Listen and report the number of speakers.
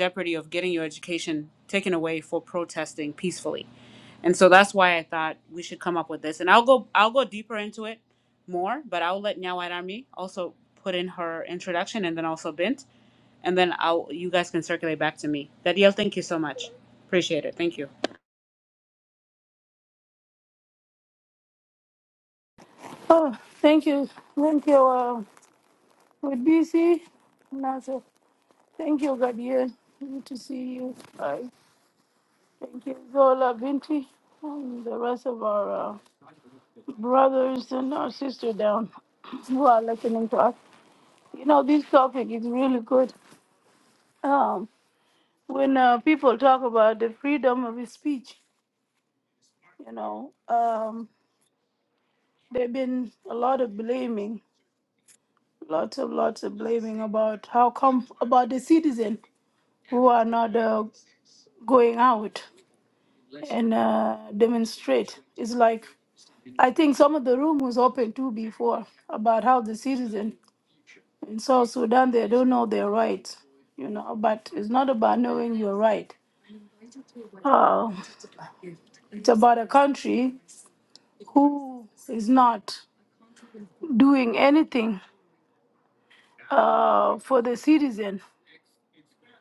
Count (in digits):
2